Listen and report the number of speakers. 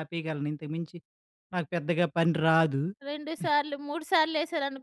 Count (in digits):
2